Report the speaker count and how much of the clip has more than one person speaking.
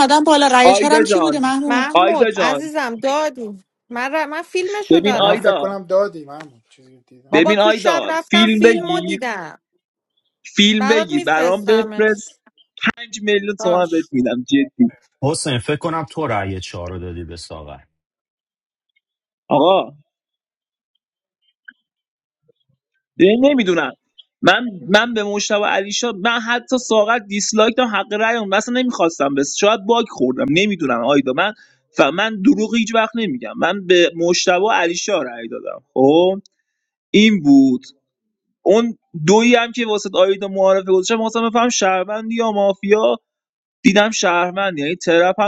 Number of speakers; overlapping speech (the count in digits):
5, about 13%